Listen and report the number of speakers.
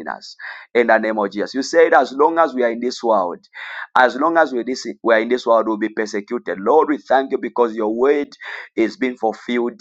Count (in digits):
1